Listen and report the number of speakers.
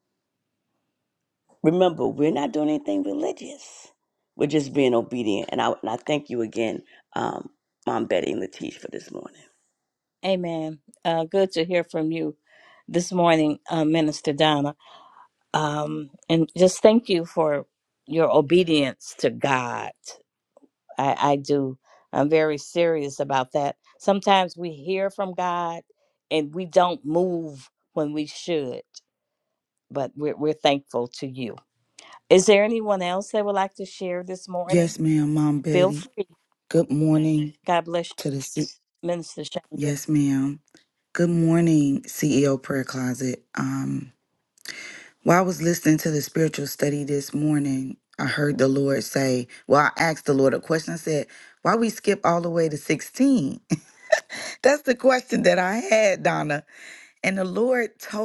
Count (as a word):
three